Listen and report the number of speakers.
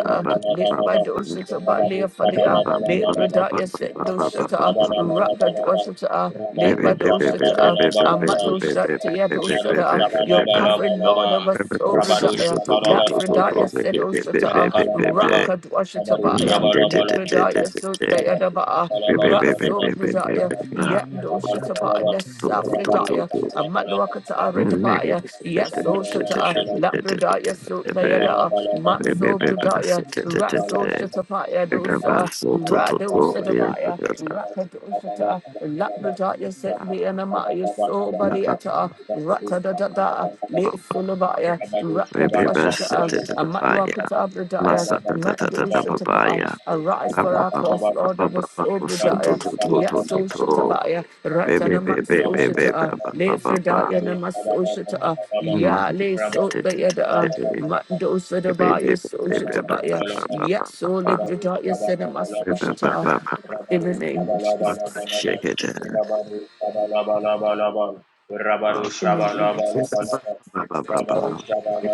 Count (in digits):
3